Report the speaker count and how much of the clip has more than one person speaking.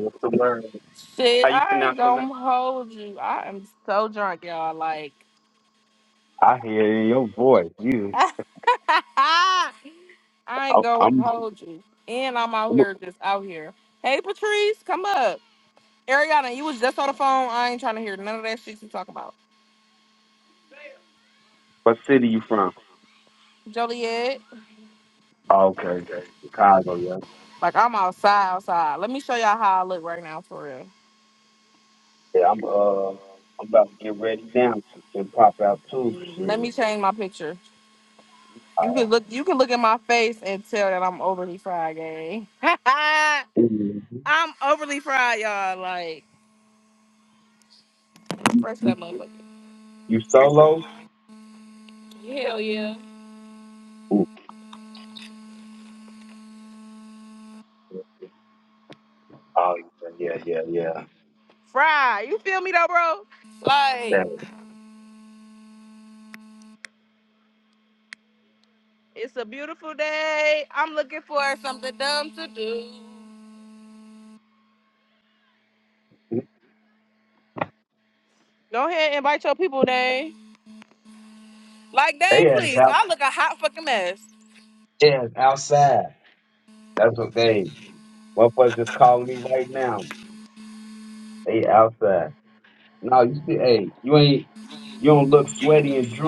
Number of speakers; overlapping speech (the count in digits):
2, about 3%